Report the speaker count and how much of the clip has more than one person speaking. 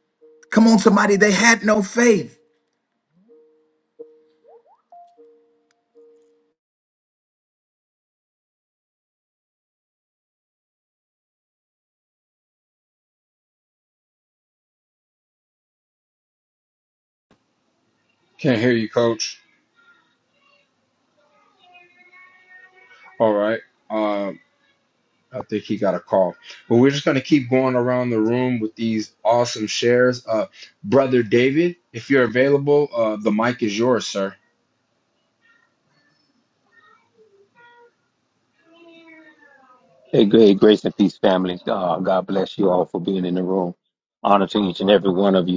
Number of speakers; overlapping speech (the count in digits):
3, no overlap